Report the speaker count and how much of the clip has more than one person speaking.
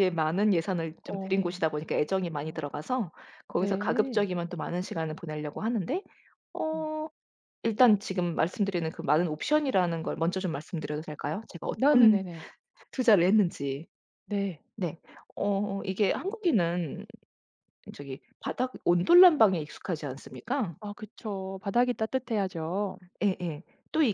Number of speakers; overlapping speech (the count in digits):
2, about 6%